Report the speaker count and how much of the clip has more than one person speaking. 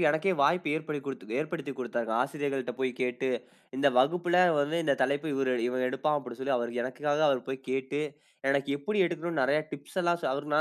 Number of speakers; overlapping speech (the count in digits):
1, no overlap